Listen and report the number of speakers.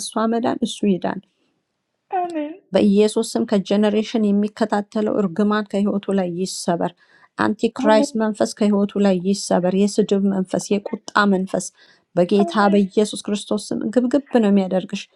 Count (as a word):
two